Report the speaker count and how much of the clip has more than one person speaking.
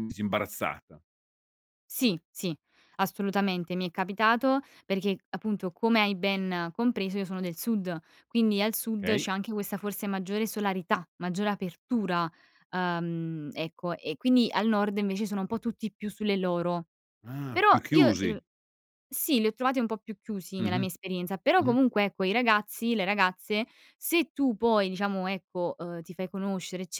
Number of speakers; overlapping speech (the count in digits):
2, about 6%